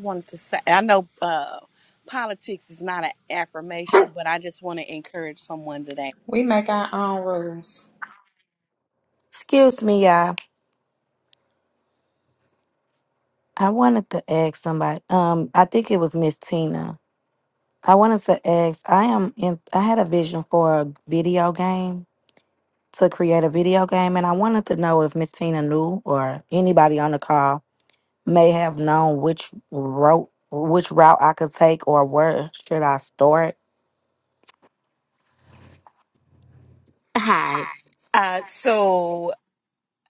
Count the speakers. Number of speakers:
4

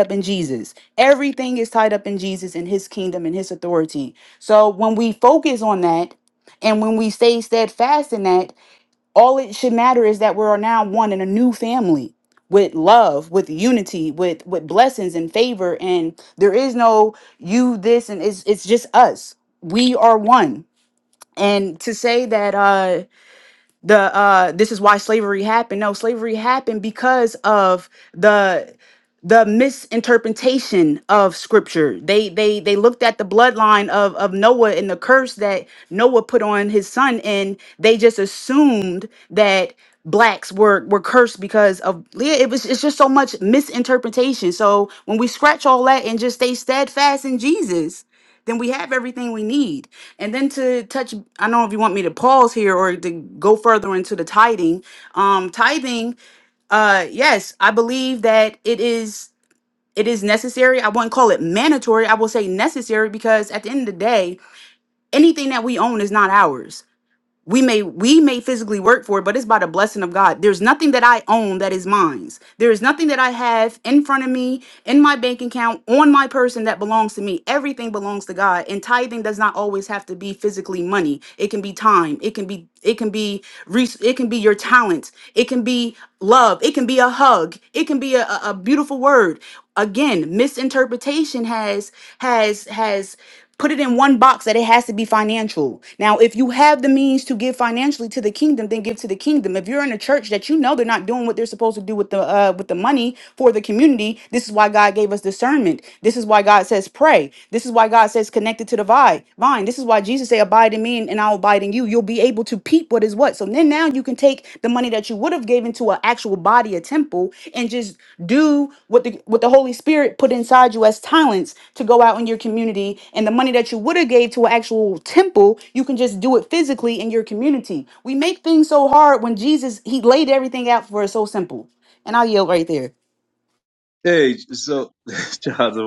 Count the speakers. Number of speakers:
2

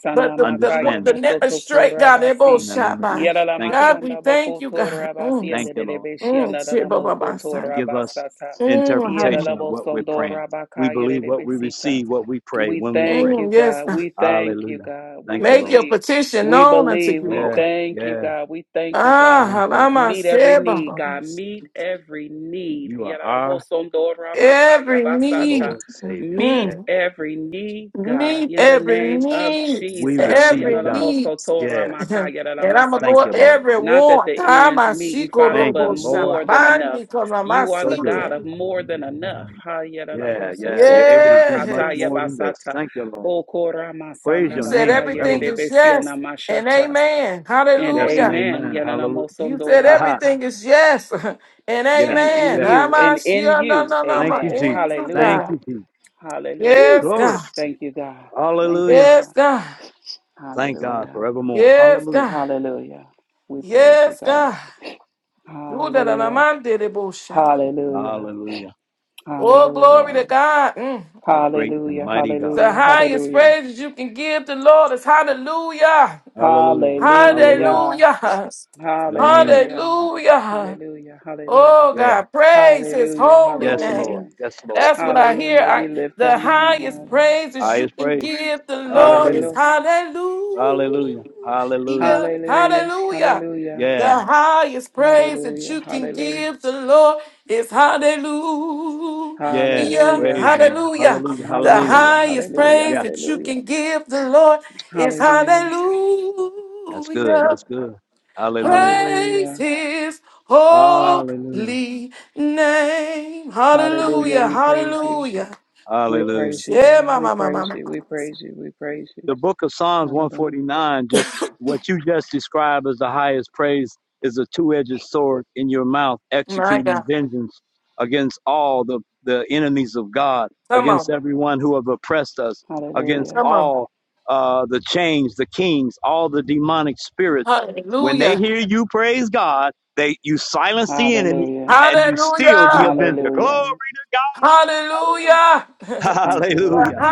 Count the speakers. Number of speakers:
3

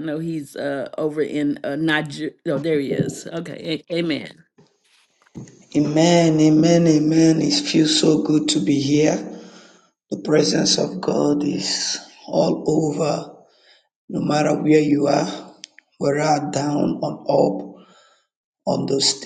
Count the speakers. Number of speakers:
2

